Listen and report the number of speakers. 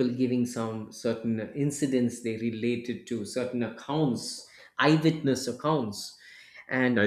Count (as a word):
one